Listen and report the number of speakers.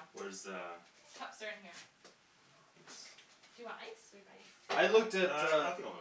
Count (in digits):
3